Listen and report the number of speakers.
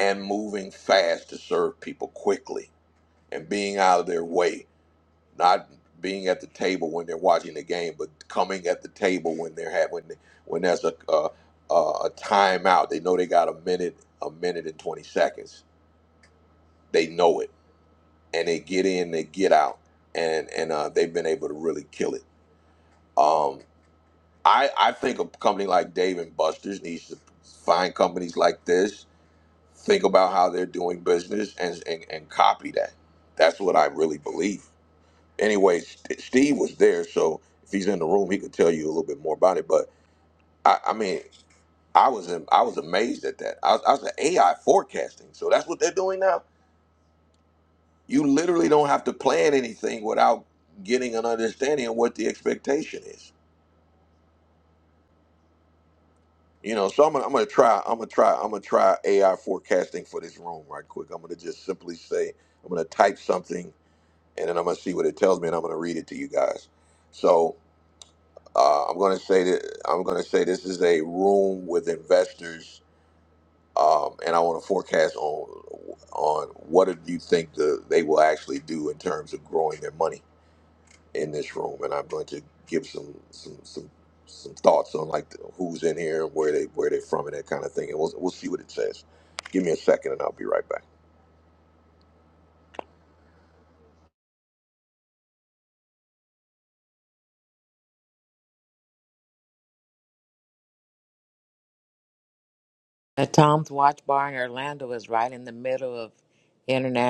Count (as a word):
two